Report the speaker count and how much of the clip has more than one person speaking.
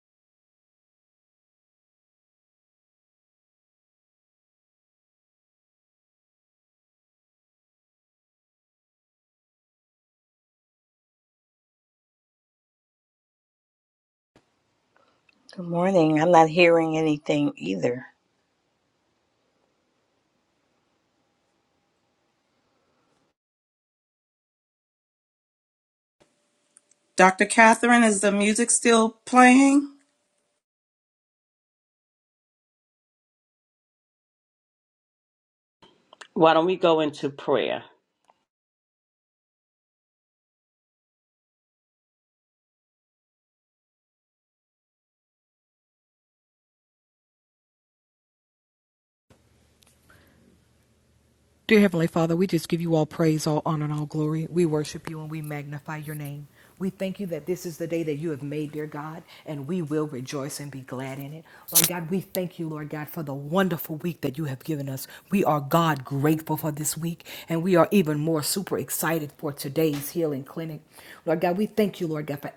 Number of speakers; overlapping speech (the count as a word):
four, no overlap